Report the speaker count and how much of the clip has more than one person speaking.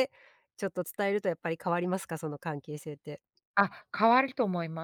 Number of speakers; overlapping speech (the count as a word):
two, no overlap